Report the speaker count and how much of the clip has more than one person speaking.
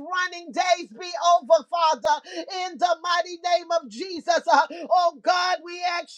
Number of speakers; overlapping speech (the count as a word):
one, no overlap